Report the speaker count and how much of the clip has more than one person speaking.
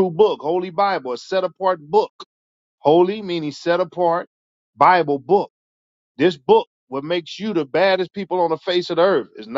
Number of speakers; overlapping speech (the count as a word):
one, no overlap